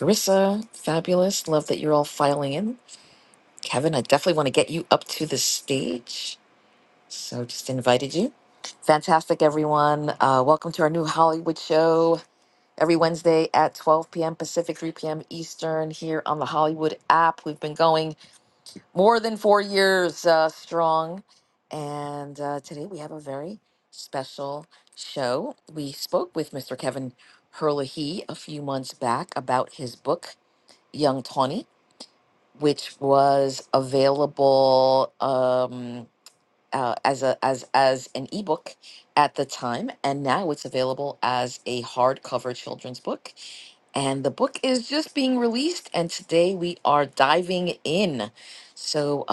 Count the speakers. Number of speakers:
1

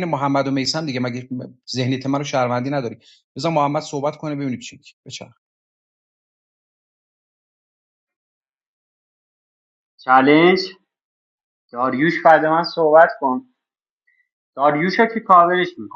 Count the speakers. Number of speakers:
2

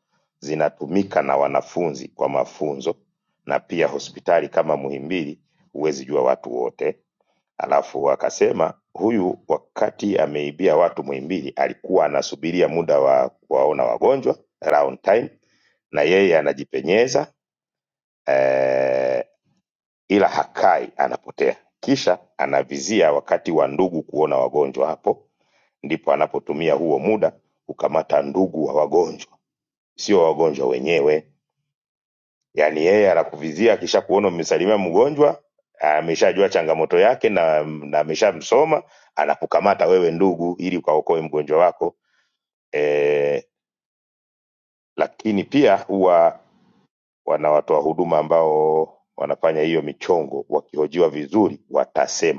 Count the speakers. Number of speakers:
1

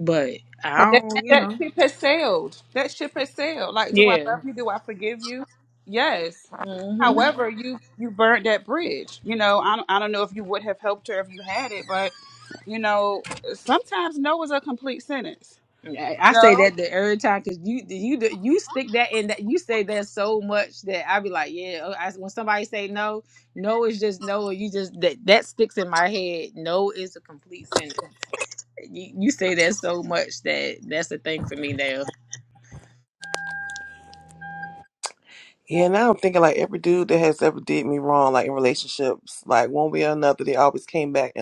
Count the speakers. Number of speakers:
3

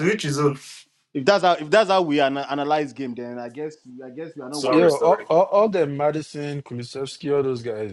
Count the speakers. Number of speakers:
3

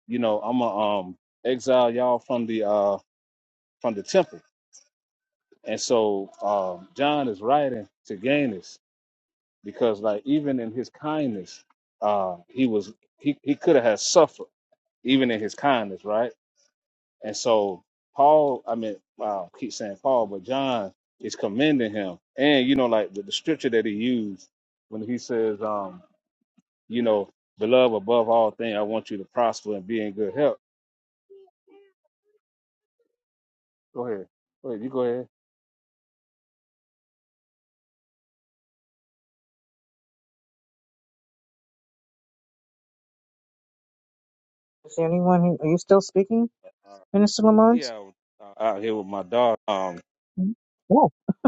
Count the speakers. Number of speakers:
2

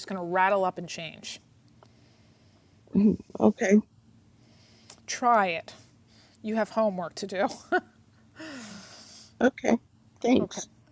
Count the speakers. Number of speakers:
2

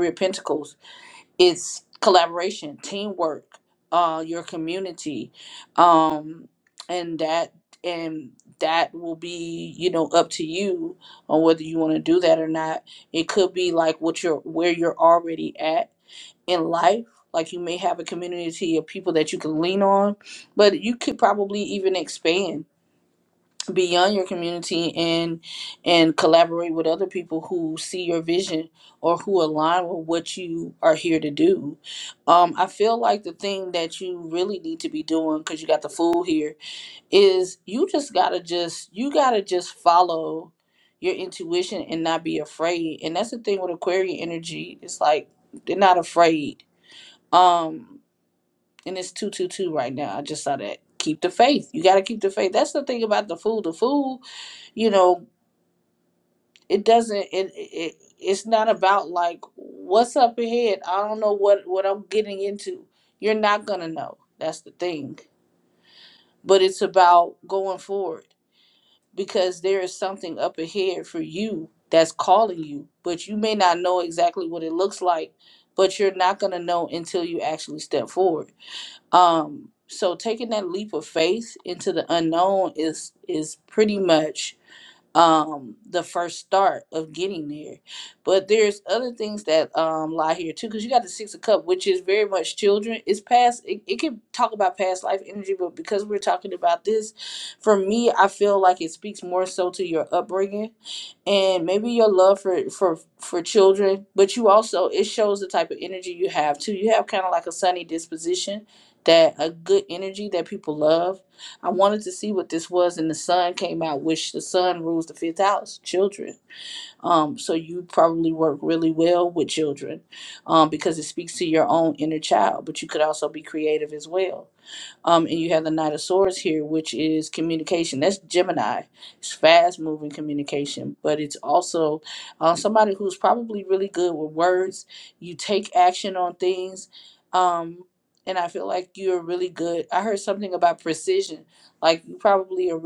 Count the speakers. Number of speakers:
1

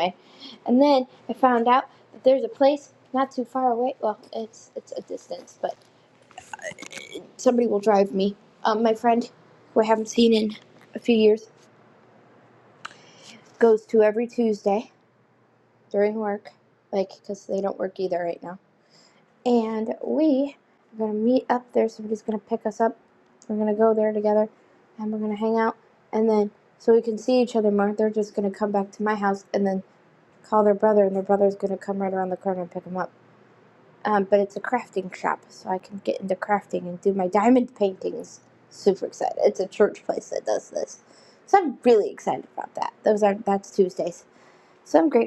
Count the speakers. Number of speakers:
1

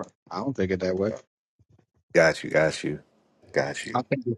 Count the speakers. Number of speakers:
2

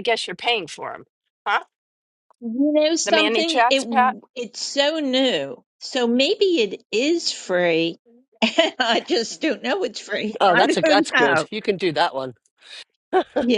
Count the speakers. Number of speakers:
3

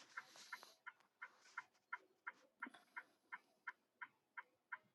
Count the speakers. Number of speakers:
0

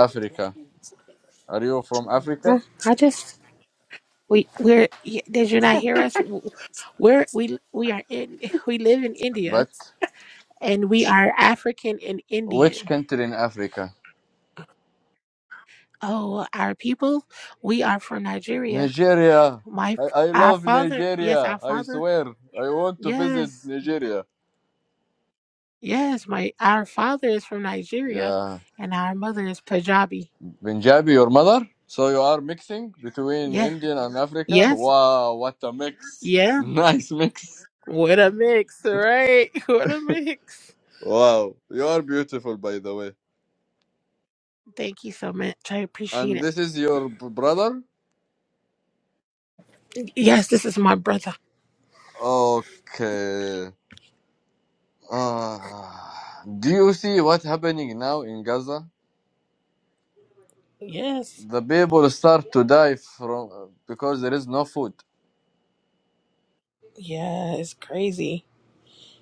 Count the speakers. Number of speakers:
2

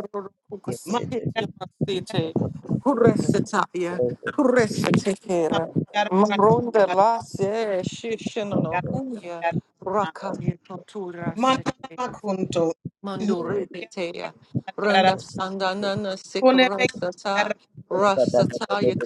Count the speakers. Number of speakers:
3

